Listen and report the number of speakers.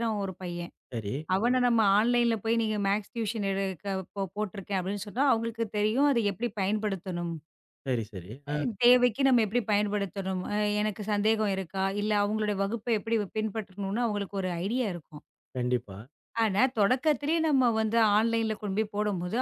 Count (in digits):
2